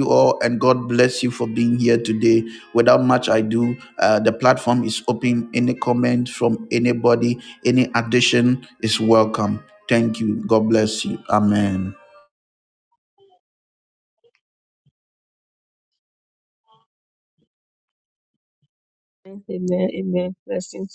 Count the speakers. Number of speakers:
2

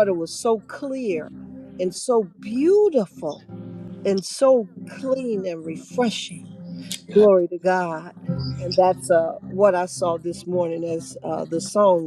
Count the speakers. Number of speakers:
1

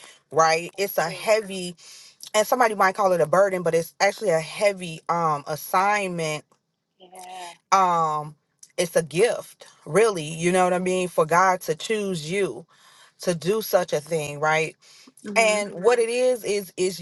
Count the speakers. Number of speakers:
2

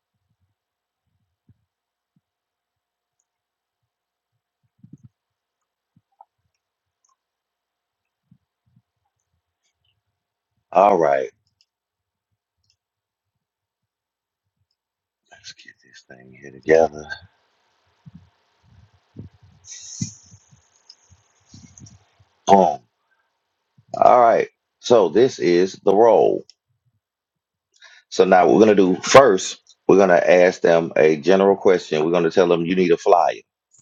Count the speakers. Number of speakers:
1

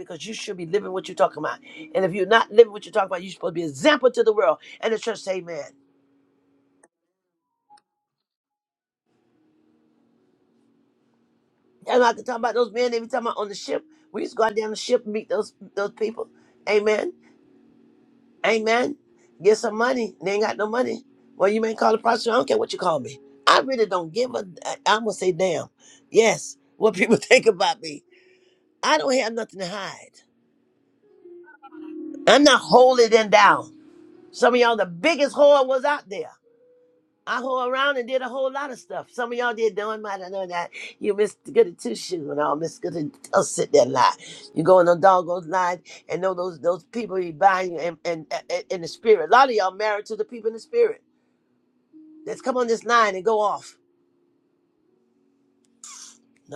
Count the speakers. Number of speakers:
1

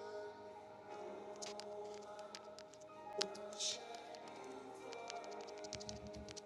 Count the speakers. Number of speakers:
0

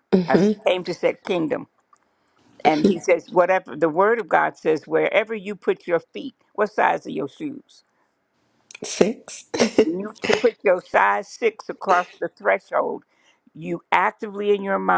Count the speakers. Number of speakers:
2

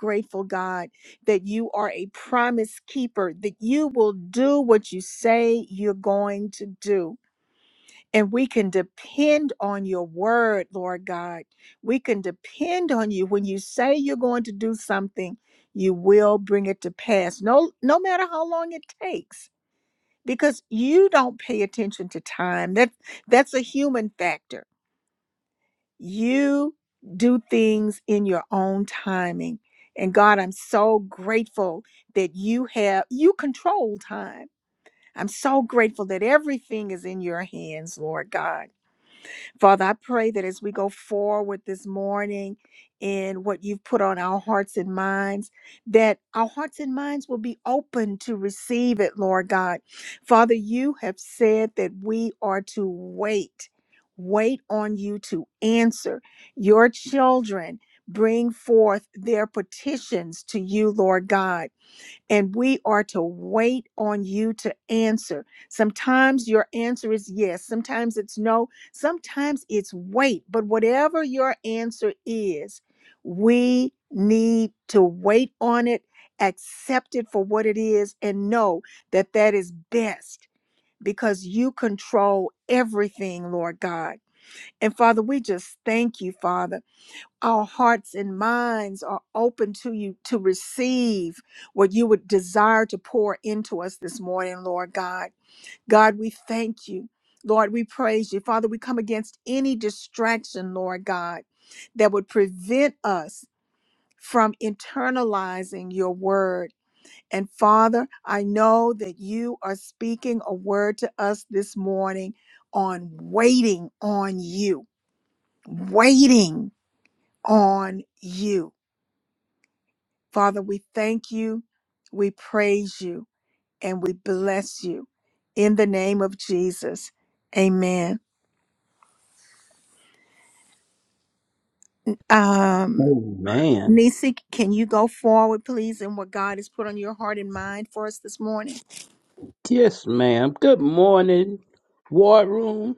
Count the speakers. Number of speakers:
2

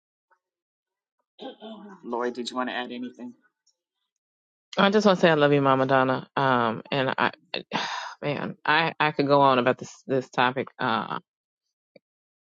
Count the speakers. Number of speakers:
2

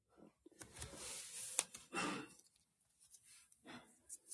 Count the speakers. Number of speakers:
0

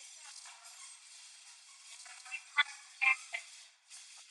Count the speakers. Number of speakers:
0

